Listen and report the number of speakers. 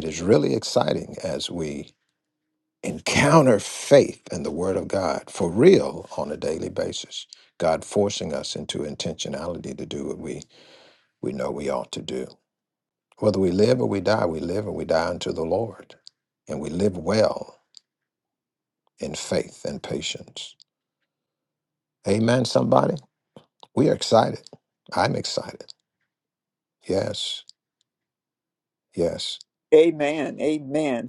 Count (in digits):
2